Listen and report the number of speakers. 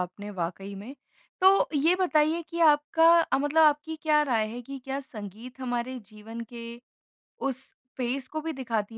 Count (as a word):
one